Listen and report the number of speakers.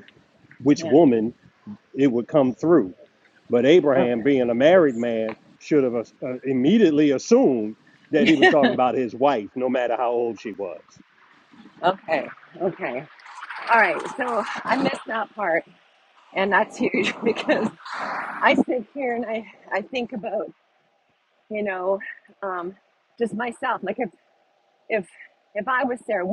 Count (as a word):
two